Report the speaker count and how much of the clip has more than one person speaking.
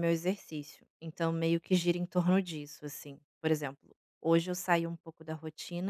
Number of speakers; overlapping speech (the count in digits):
1, no overlap